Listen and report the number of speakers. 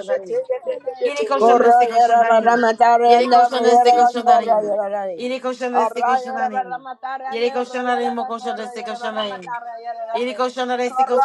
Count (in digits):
3